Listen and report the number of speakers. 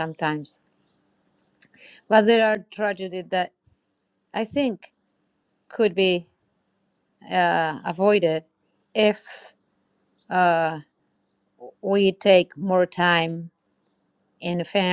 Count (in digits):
1